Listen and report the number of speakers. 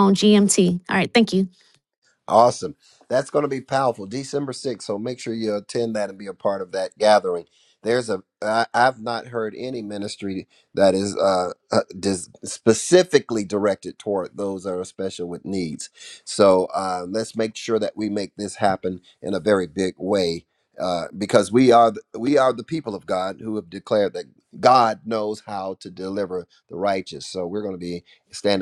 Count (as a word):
two